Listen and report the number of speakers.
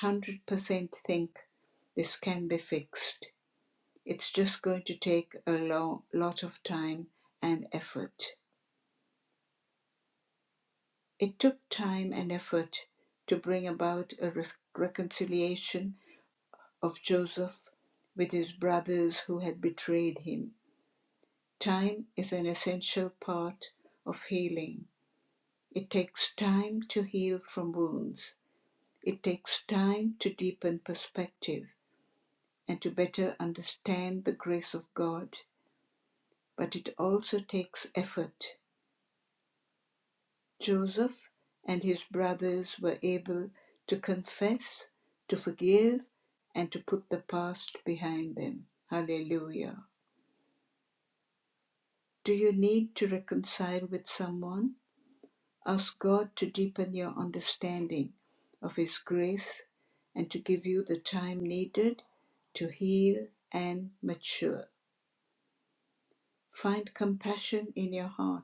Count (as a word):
one